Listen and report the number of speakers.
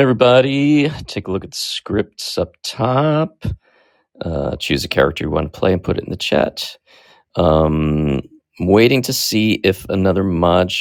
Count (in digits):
1